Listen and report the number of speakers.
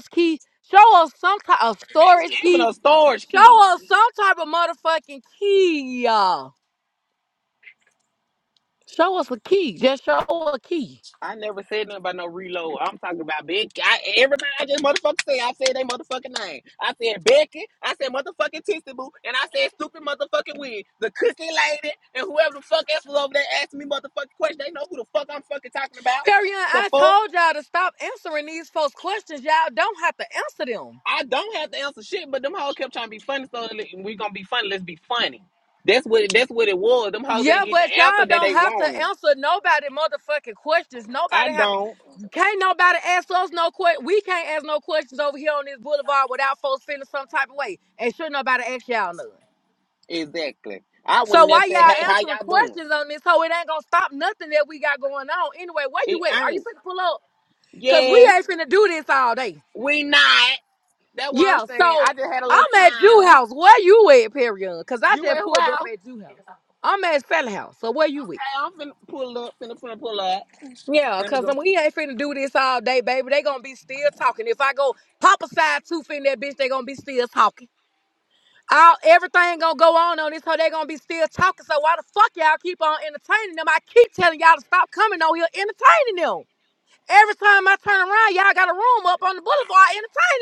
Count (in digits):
2